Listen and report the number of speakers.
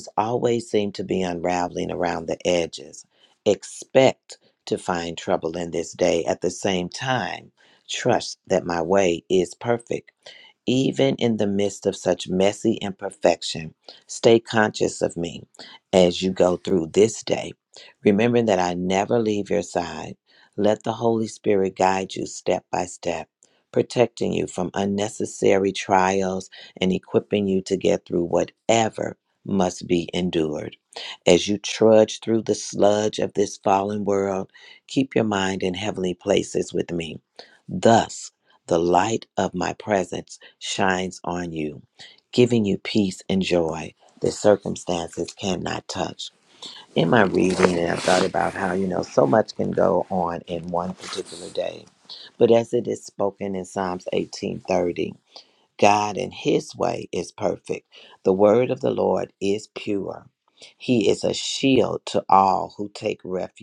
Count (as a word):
one